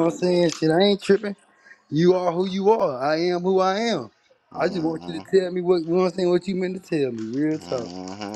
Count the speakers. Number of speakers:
two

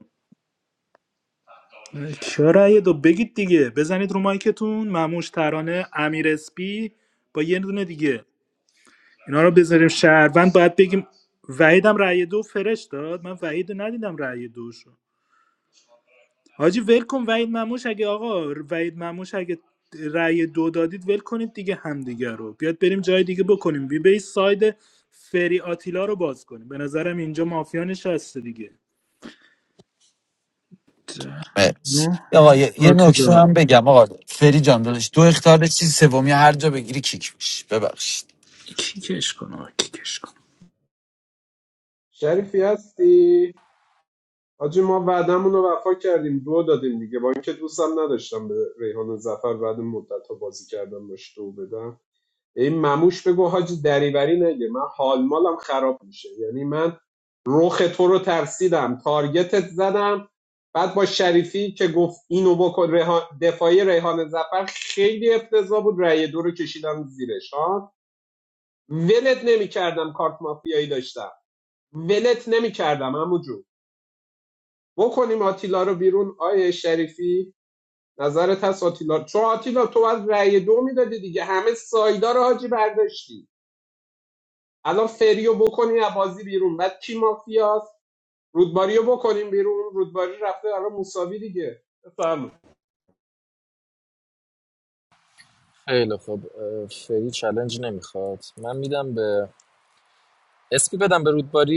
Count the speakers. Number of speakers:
four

